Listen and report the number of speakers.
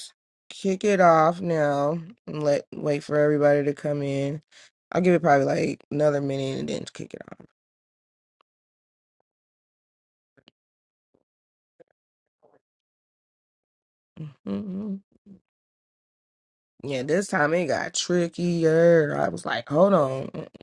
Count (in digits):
1